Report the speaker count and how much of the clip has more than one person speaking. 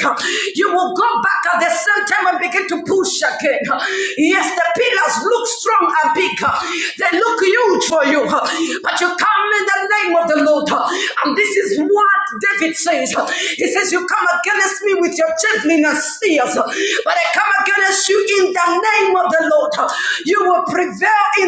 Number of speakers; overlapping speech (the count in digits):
1, no overlap